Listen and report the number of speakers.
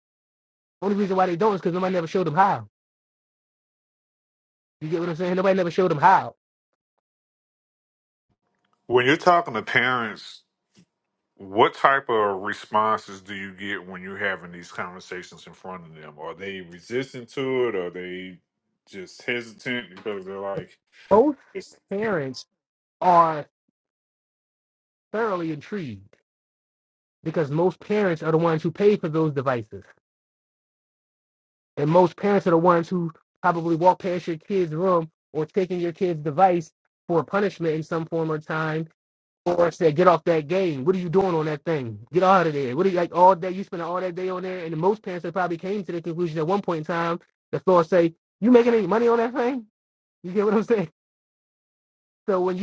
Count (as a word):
two